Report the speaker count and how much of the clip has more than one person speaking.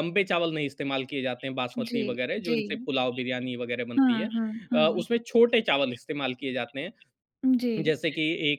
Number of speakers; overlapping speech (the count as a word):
two, about 13%